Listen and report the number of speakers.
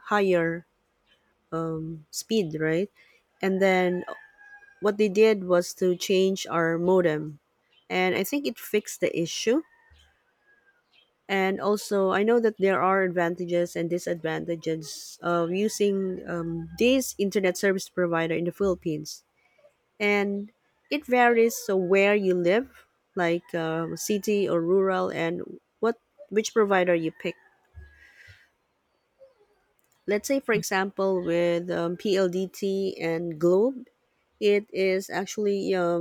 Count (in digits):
1